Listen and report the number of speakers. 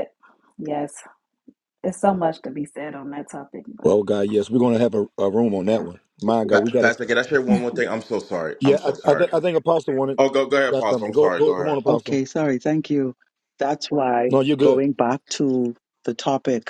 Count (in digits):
4